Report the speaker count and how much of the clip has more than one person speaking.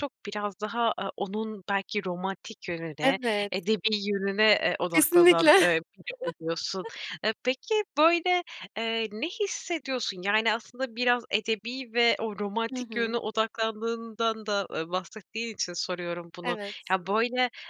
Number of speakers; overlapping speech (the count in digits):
2, about 9%